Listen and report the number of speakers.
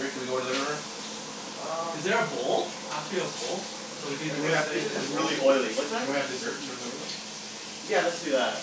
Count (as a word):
three